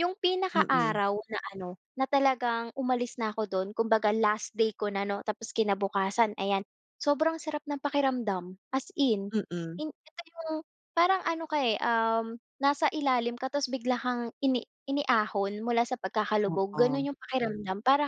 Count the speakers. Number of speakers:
2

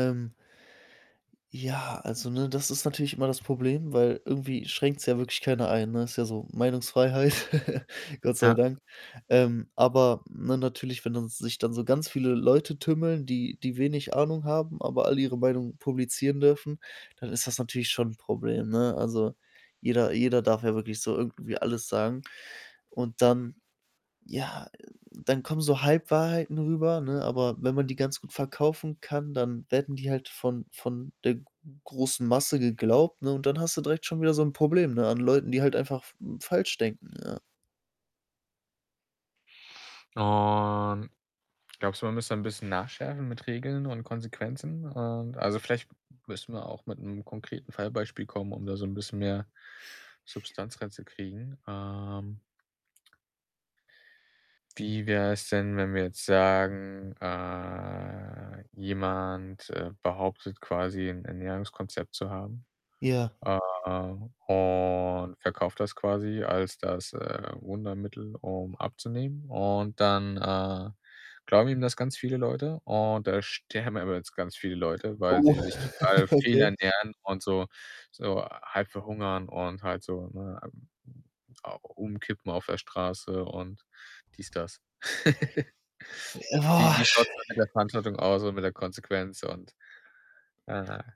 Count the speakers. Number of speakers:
2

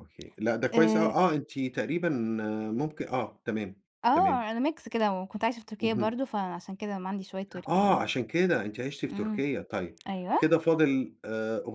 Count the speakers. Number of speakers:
2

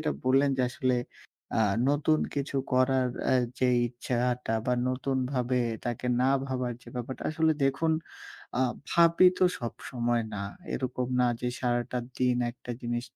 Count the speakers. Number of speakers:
1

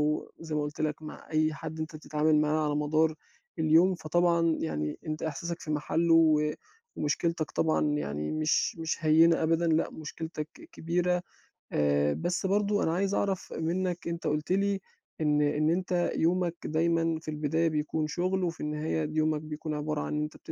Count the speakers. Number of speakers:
1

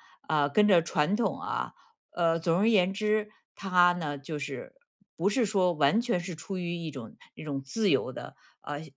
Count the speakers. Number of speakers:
1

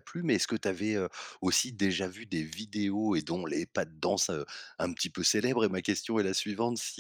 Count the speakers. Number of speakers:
1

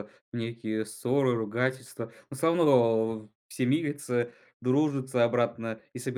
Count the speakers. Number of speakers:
1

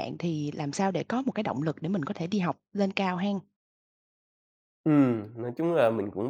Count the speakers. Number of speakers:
2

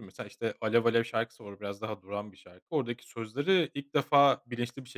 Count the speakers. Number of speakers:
1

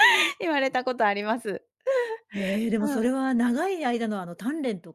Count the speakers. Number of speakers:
2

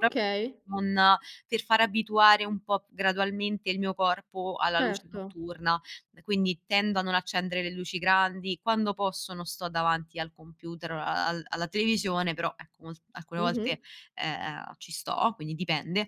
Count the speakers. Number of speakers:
2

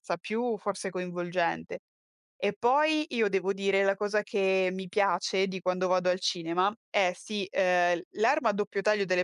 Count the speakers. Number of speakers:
1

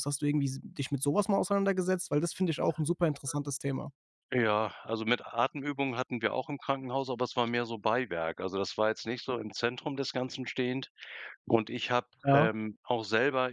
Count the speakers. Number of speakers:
2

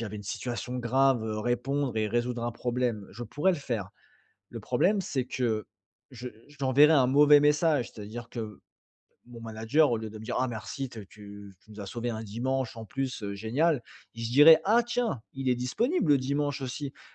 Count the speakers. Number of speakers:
1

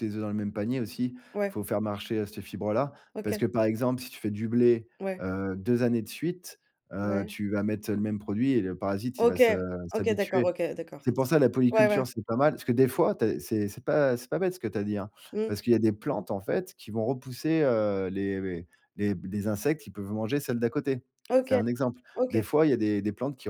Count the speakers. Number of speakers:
2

